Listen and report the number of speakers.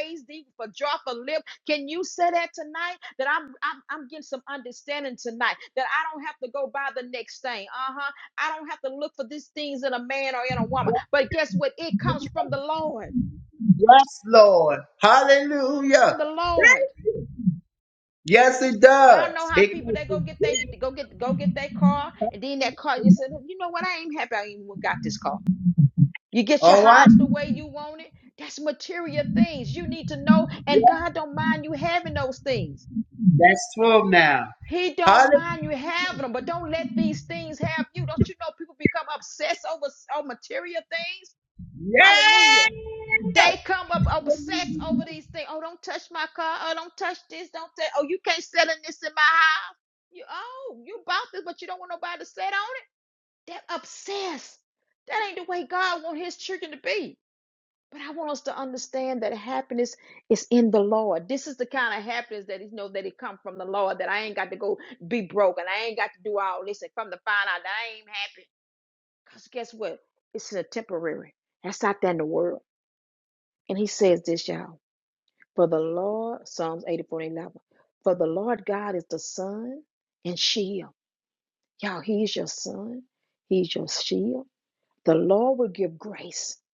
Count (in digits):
2